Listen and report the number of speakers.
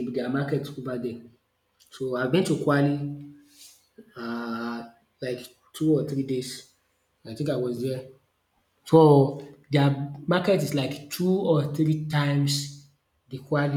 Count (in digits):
1